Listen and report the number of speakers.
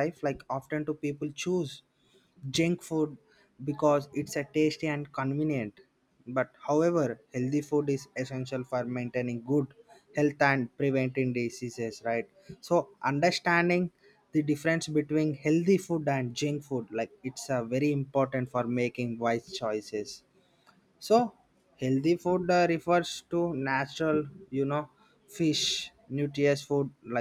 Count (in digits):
1